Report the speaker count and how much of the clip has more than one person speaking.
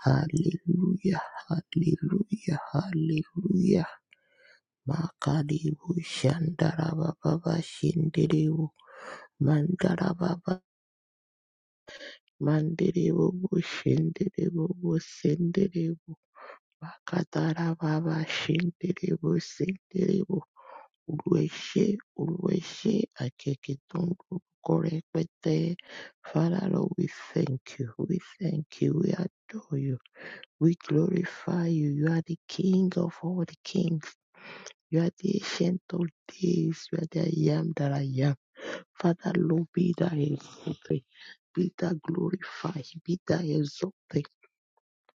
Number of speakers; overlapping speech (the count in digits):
1, no overlap